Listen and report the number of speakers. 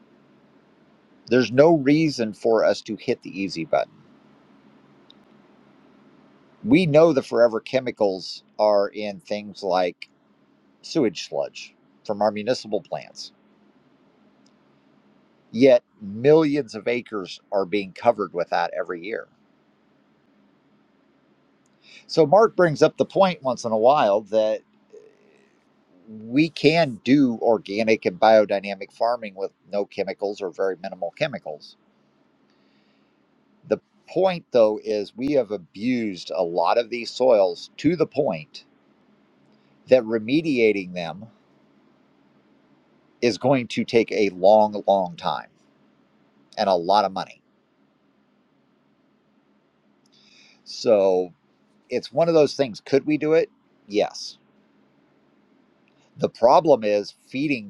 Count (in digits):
1